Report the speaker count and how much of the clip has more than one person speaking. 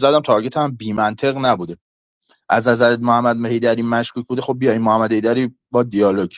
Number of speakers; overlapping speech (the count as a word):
one, no overlap